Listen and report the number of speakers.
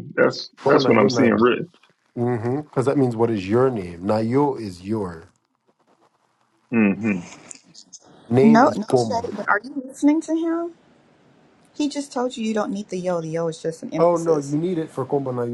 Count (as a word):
three